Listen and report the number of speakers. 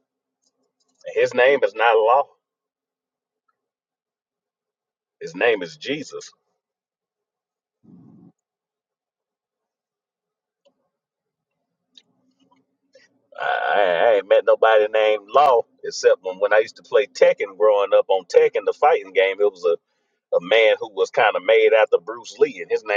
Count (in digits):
1